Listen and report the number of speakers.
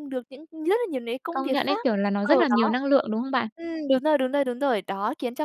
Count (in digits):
2